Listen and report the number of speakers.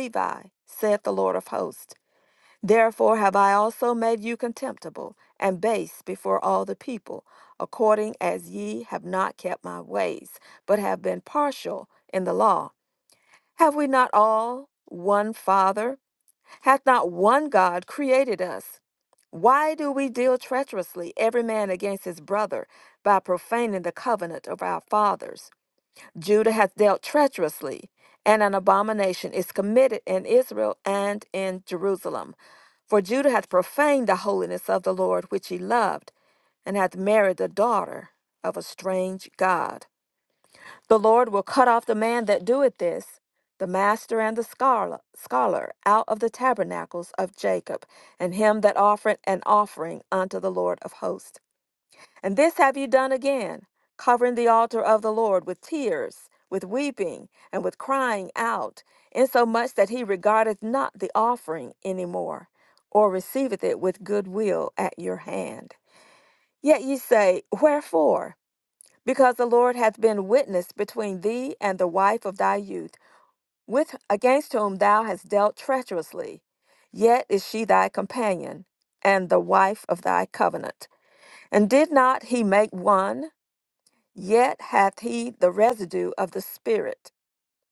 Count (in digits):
1